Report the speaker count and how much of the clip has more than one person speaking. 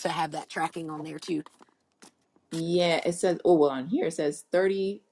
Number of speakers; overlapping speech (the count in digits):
2, no overlap